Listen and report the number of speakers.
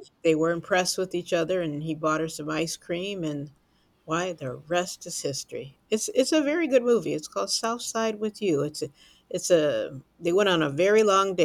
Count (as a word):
one